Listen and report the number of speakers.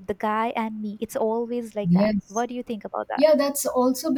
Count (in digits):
2